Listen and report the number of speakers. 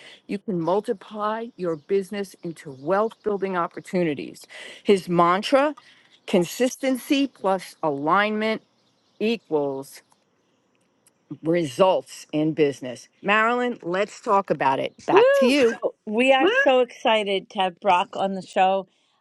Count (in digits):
2